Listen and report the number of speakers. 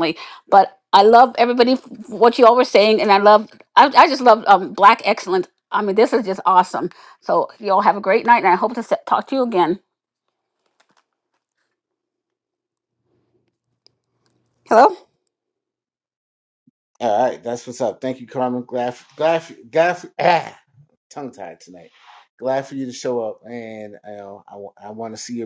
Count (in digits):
2